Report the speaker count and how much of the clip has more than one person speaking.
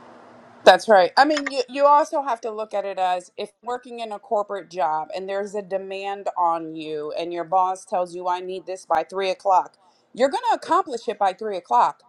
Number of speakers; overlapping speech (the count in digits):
1, no overlap